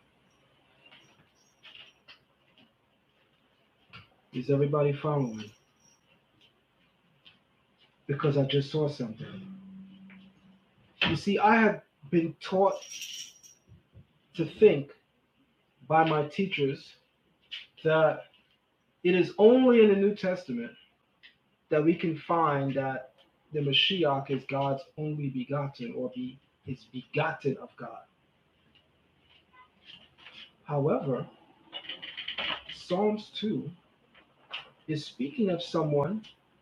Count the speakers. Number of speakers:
one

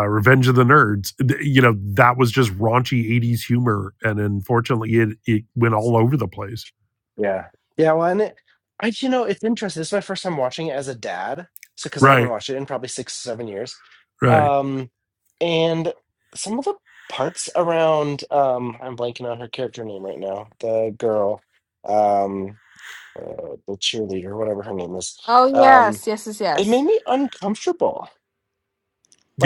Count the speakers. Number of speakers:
three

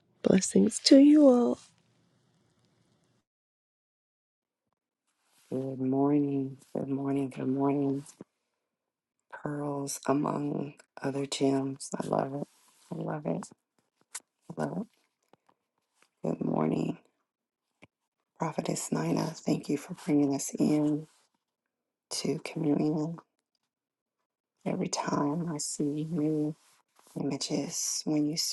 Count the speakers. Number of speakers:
two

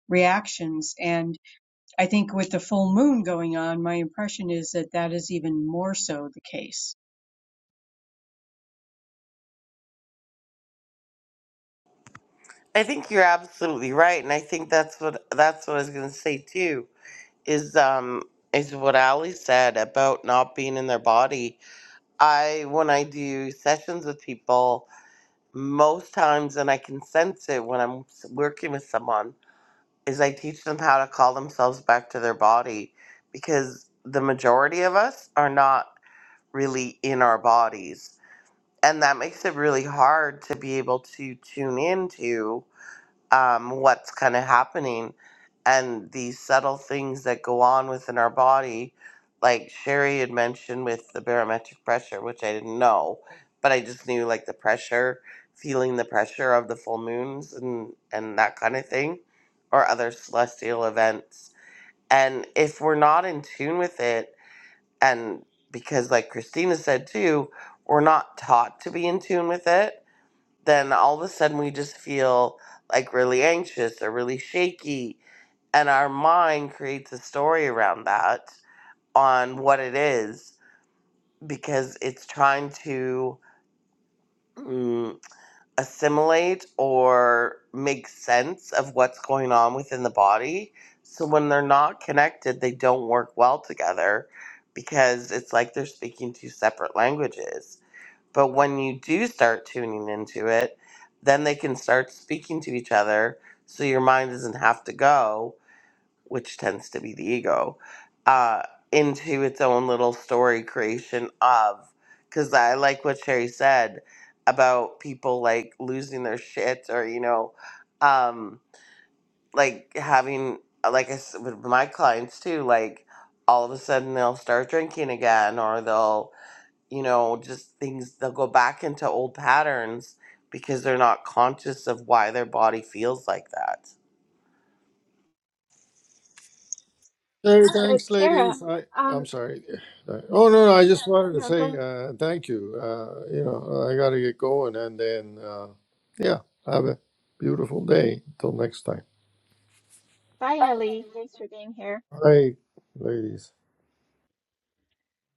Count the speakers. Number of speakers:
four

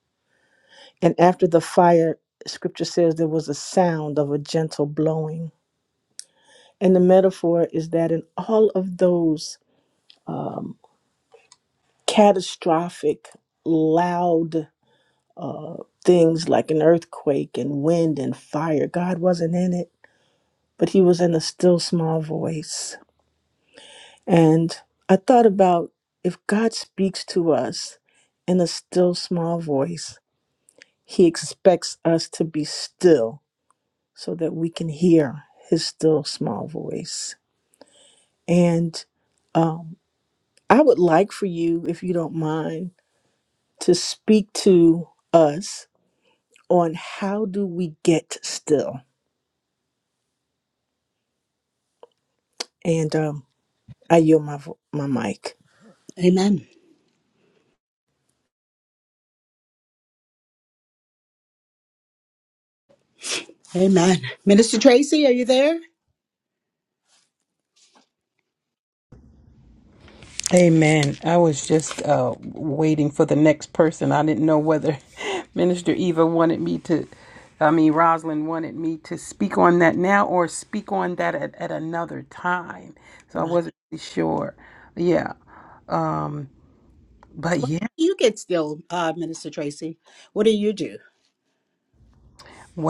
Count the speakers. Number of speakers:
three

